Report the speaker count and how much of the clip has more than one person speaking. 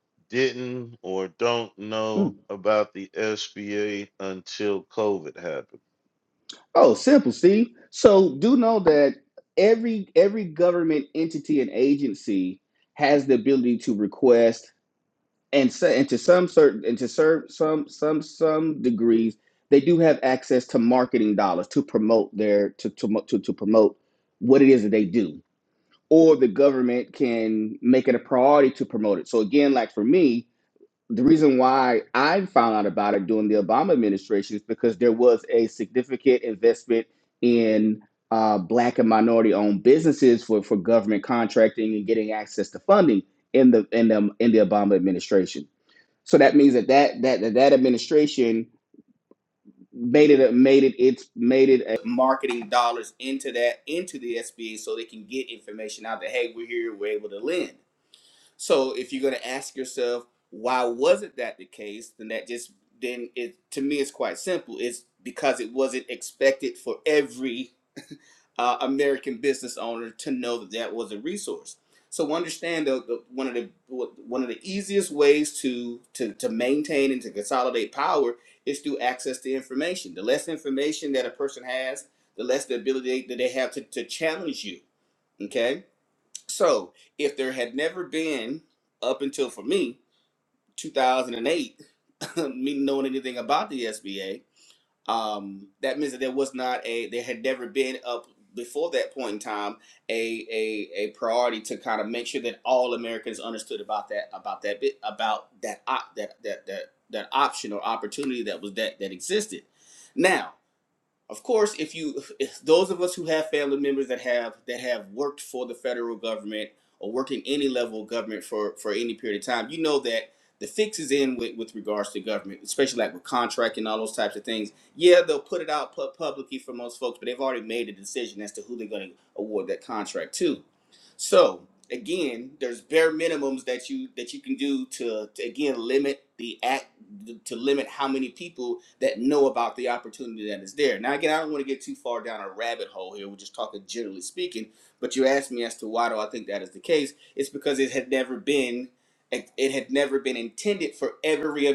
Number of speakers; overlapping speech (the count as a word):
two, under 1%